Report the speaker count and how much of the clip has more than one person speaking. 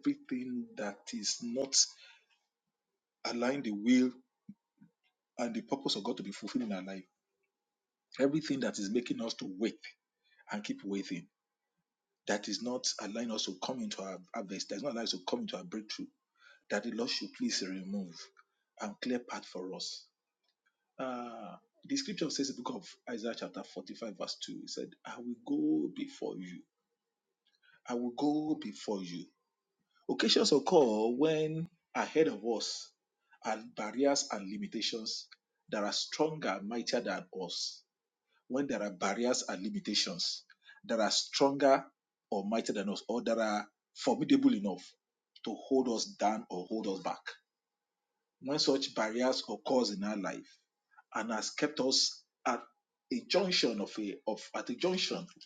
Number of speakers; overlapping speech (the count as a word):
one, no overlap